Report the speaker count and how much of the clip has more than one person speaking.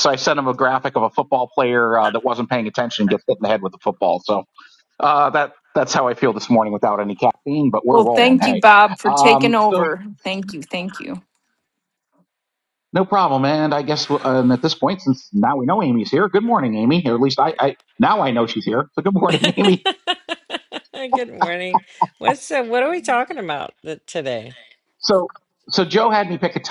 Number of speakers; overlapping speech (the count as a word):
three, about 6%